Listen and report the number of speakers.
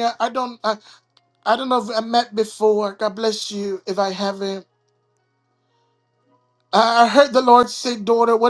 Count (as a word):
one